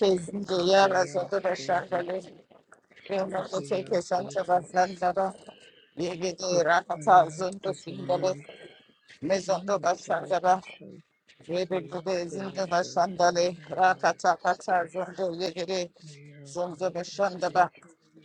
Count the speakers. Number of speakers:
2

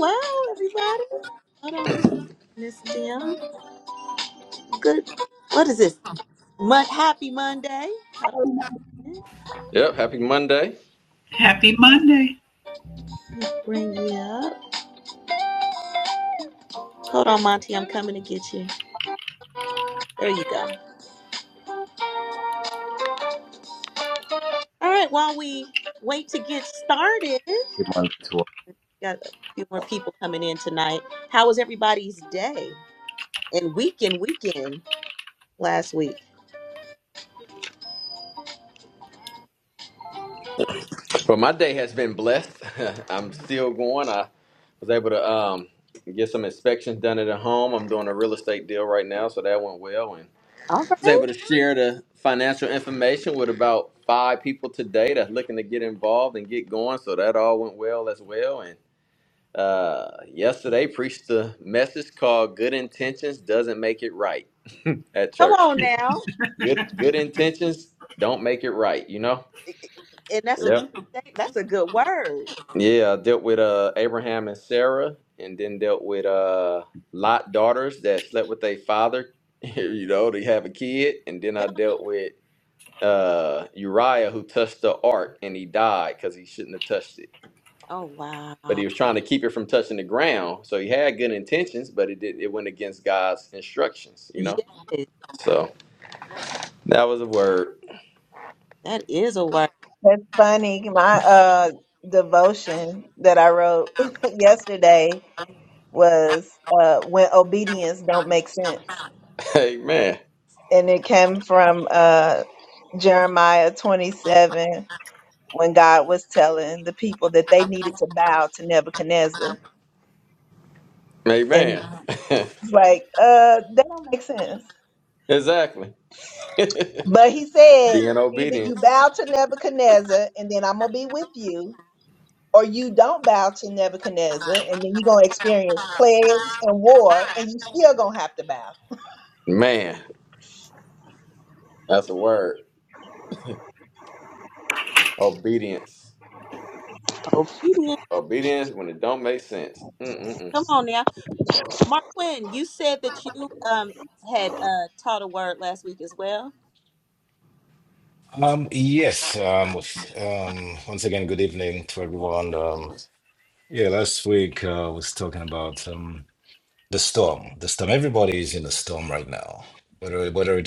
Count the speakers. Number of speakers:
5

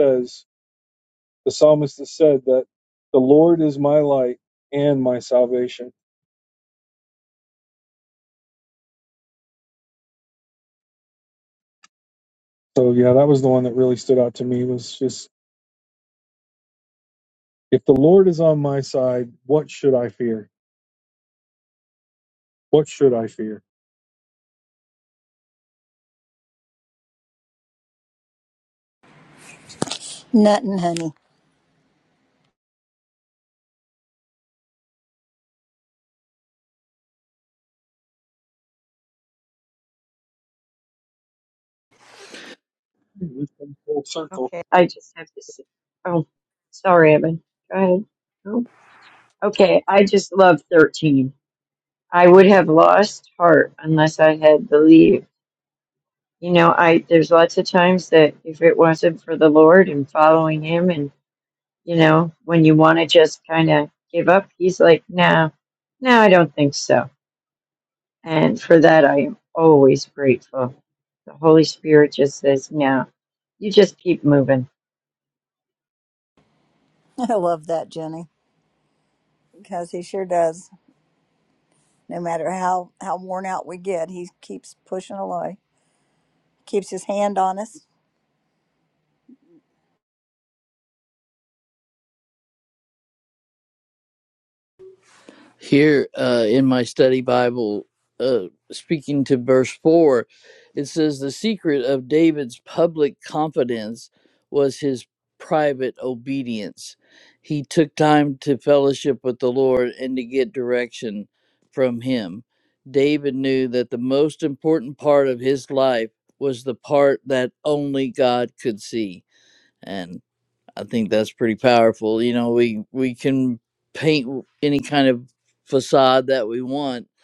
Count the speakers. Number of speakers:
4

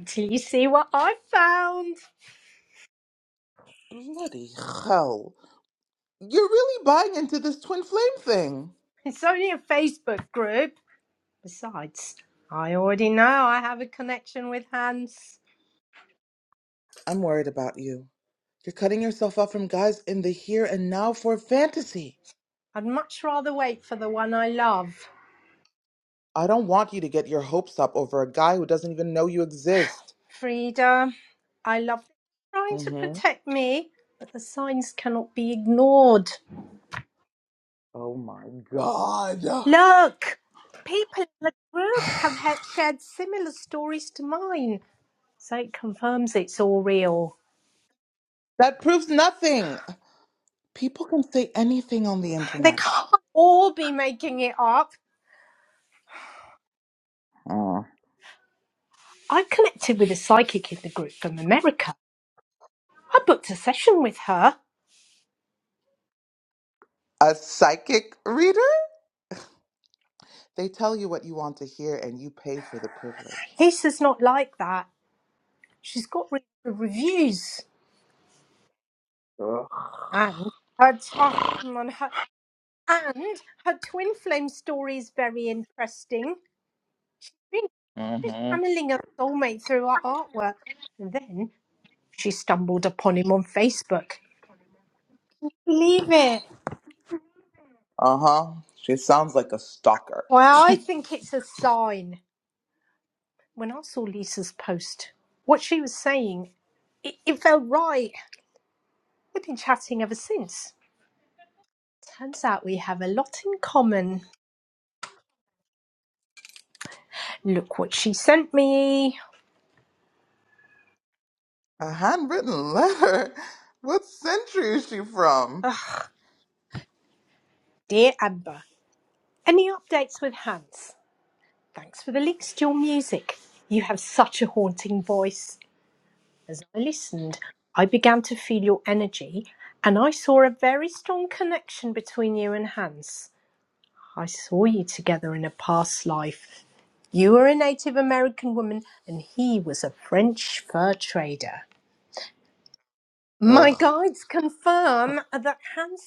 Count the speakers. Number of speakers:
2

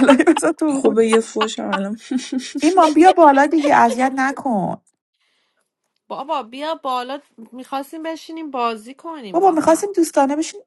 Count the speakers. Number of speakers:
3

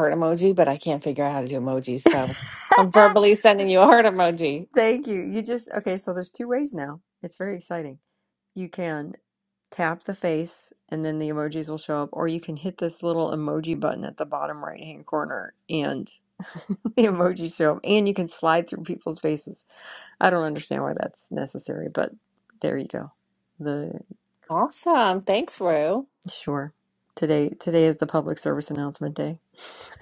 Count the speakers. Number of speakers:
2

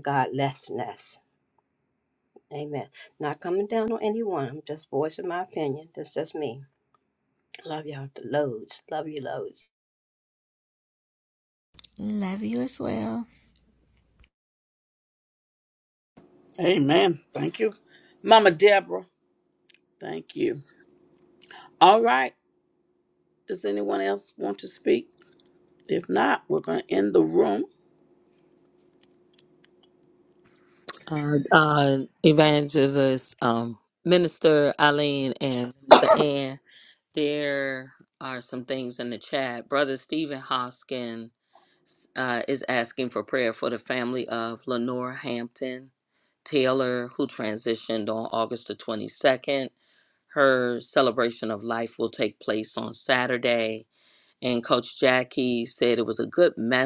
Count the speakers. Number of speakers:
4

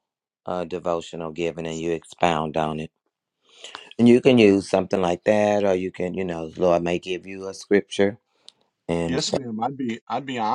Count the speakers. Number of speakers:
2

